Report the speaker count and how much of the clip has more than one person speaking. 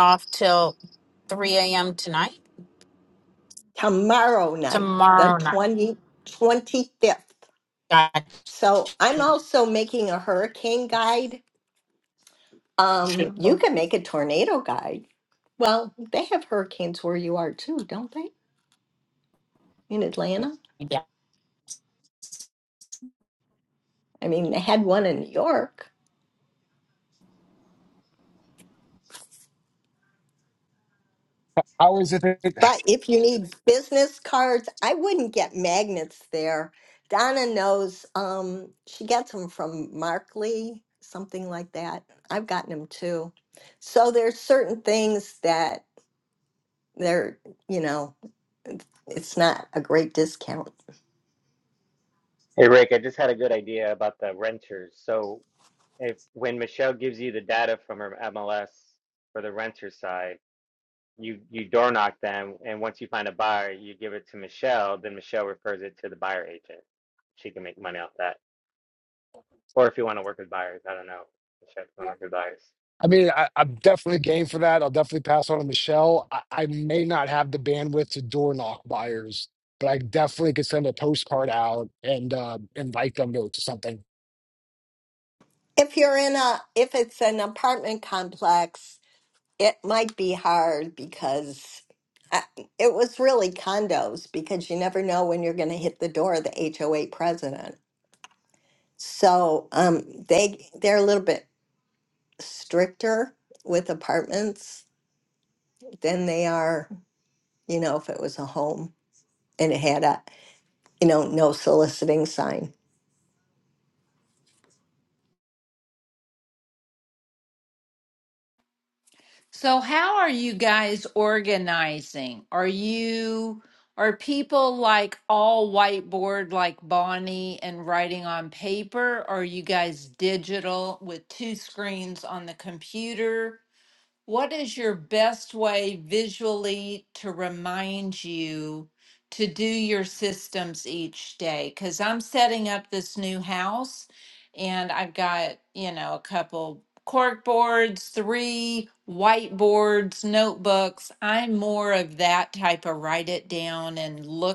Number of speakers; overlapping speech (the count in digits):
5, about 1%